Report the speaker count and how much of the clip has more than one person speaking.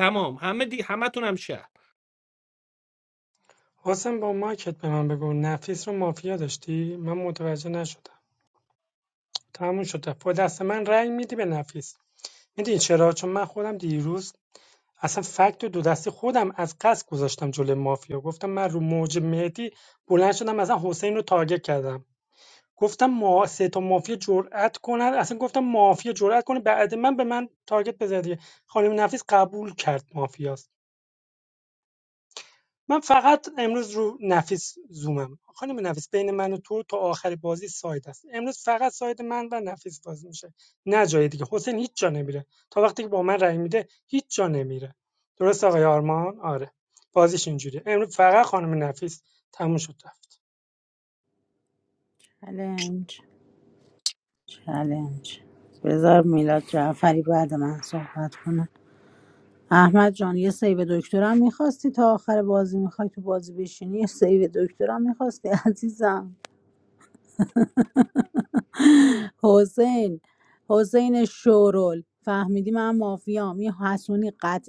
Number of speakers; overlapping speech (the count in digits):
3, no overlap